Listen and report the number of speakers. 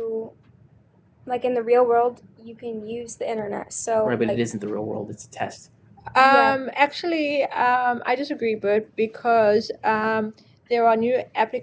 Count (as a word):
three